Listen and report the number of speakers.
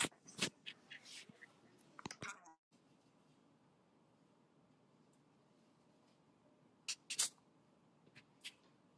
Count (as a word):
zero